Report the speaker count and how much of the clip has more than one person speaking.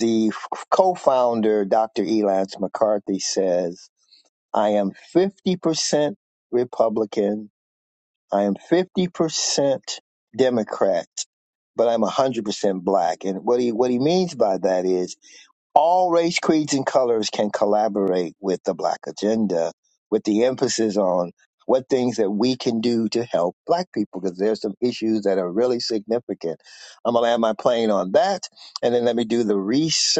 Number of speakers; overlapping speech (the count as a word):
one, no overlap